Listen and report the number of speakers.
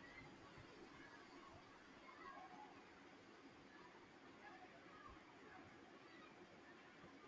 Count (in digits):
0